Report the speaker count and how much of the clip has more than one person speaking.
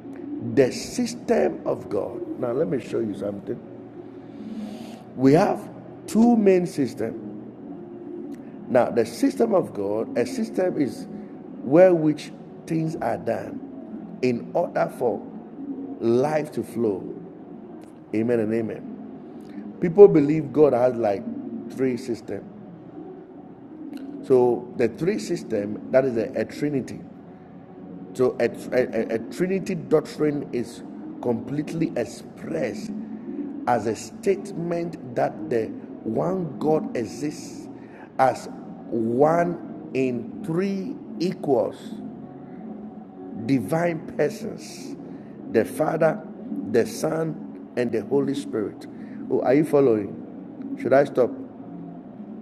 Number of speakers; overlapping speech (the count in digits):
1, no overlap